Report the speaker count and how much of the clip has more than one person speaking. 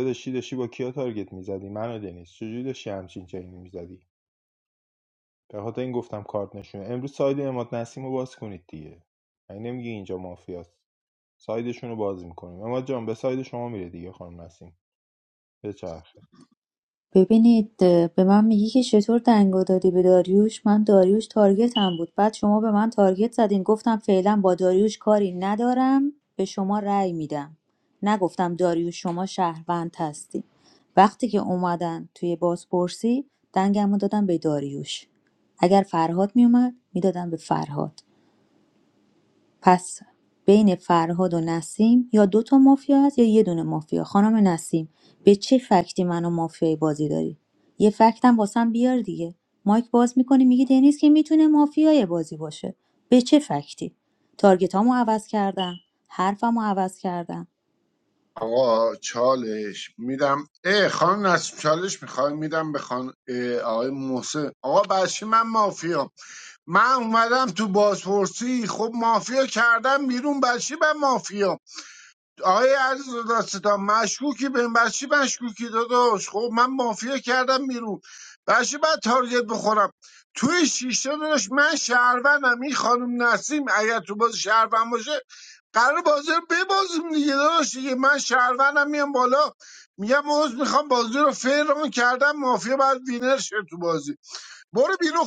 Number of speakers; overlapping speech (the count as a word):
three, no overlap